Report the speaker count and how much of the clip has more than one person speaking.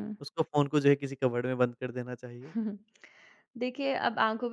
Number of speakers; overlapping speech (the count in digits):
2, no overlap